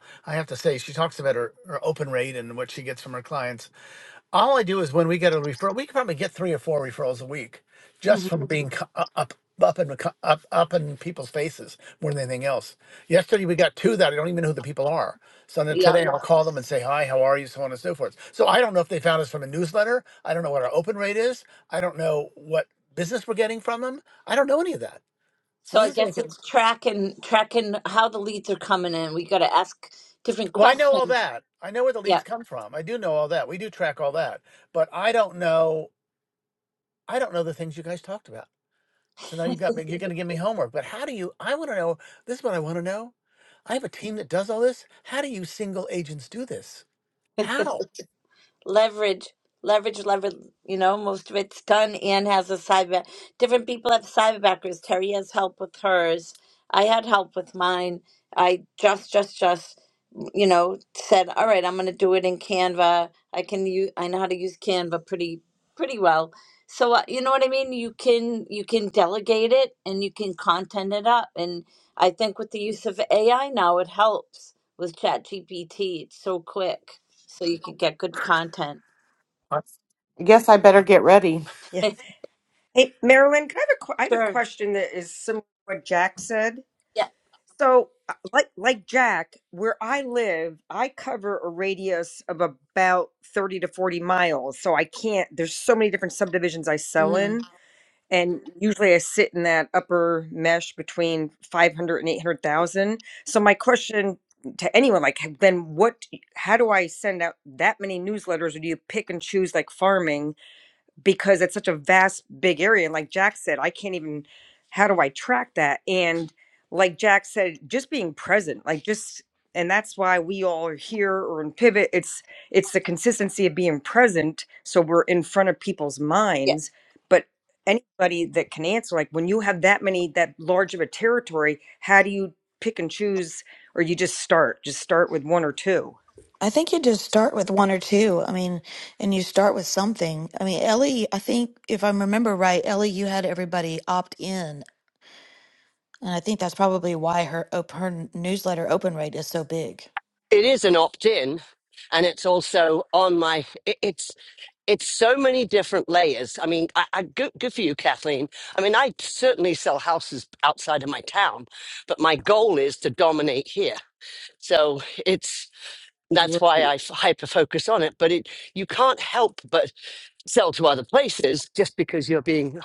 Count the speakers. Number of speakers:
6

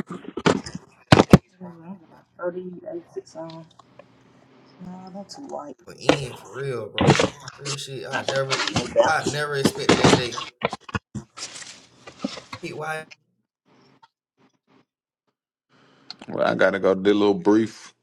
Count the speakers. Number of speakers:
3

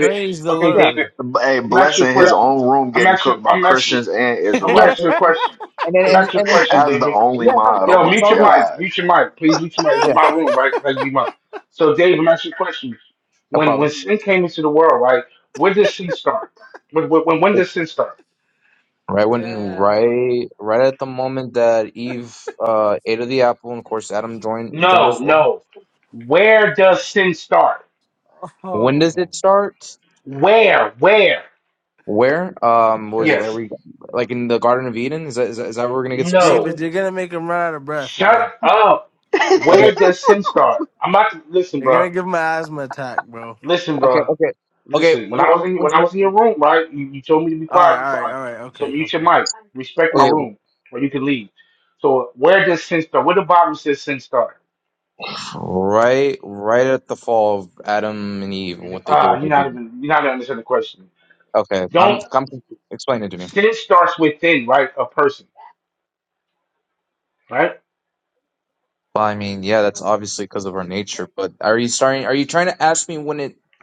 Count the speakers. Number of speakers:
4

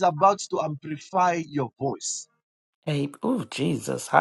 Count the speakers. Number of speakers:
2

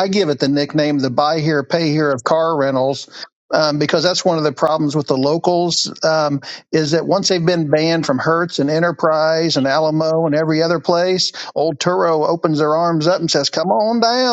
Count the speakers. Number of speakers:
1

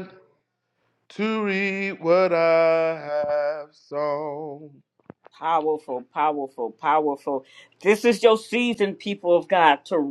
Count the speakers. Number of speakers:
2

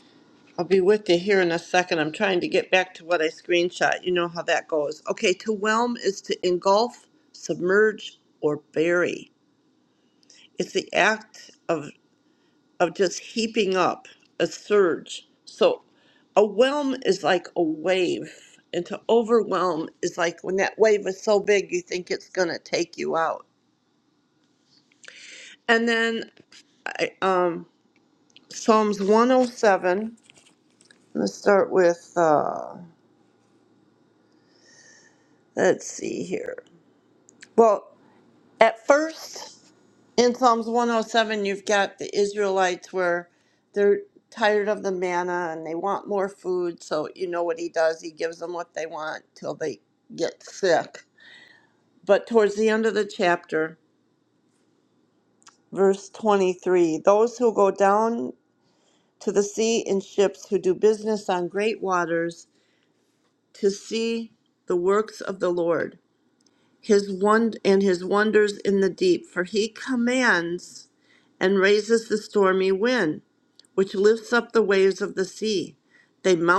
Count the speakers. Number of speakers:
1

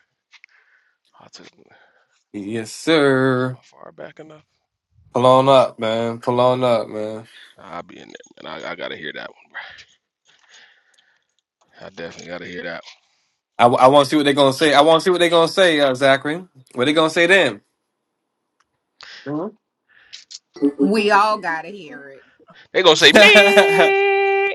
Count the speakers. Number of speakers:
3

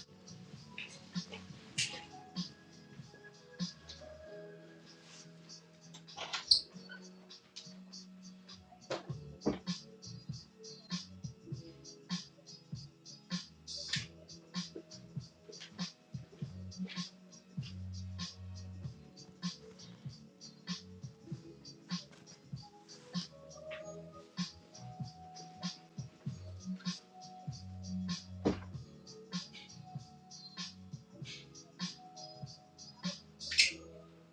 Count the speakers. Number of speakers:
0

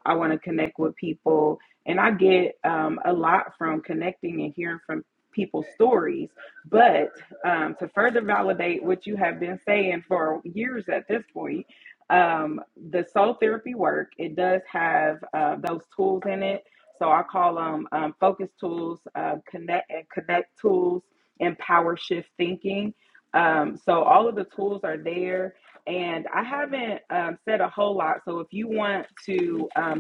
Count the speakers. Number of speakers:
1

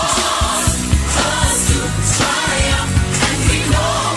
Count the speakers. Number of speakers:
0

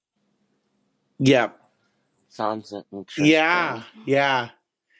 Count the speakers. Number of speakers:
2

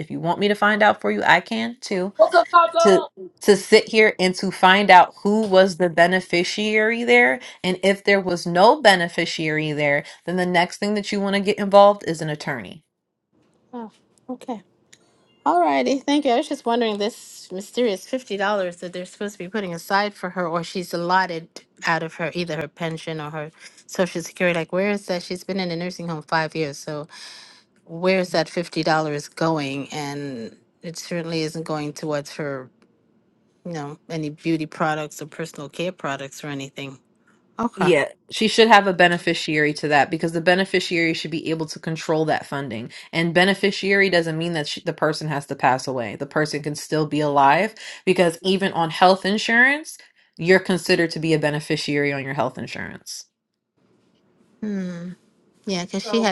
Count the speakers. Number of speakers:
3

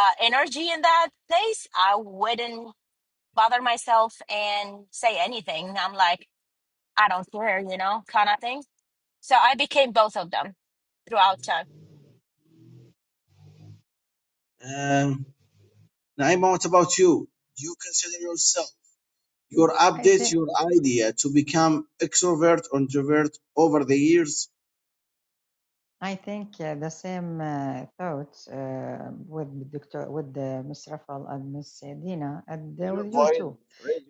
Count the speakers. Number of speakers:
3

